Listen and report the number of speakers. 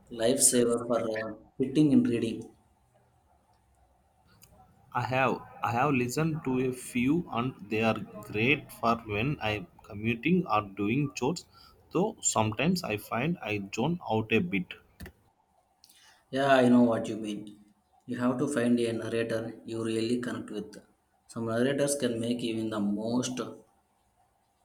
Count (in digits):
2